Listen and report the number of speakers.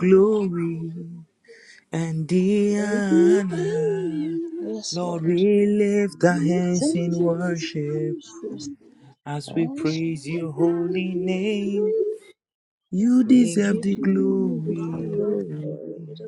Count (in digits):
3